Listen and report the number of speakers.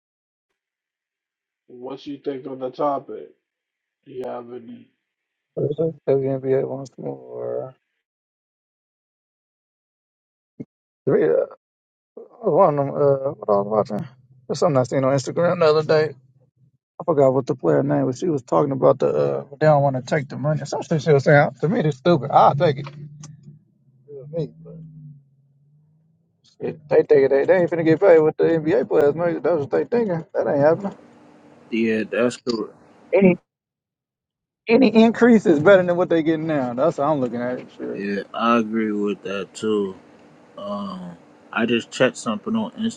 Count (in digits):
3